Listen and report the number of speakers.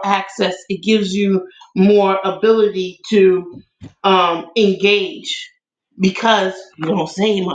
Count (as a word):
one